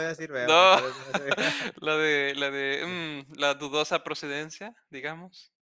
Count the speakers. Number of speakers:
two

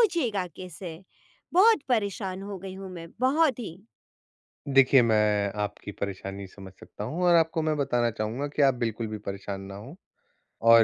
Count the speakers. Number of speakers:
two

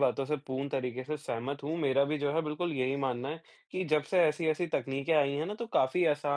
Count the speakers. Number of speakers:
one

